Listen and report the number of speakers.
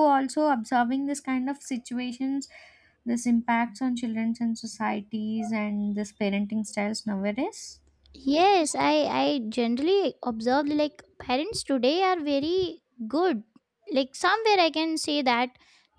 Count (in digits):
2